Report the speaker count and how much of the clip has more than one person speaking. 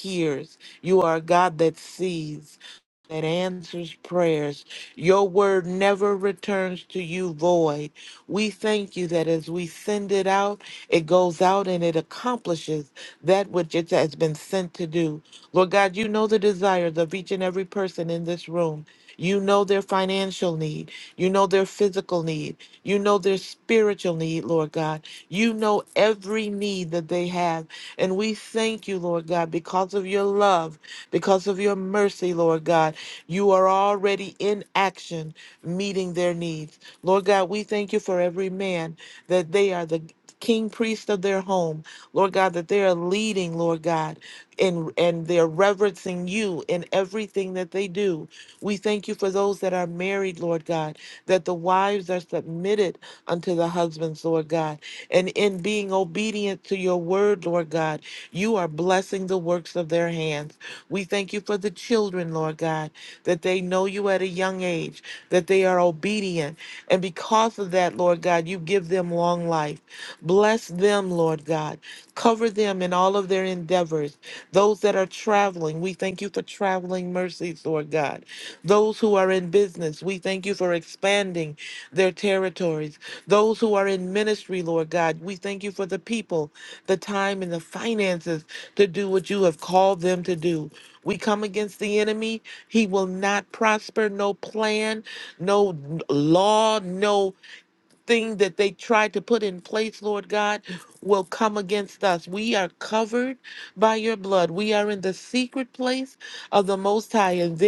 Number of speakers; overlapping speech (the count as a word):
one, no overlap